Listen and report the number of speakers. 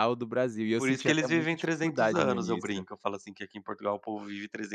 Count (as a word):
two